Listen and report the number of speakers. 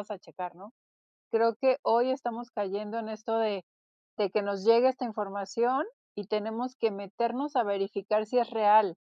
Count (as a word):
one